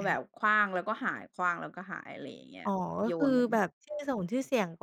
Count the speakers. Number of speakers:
two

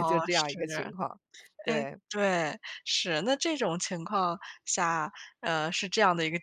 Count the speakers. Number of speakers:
two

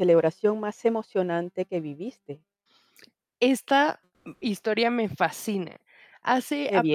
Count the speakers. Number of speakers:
two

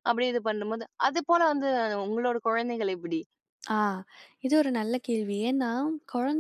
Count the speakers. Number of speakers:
two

